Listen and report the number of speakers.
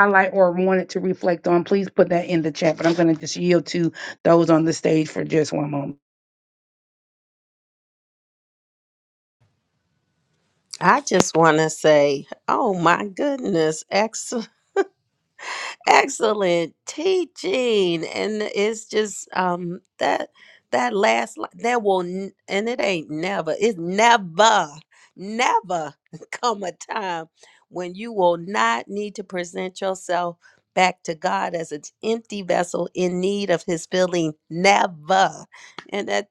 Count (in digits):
2